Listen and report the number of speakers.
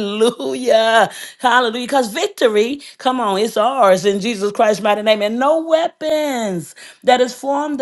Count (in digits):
1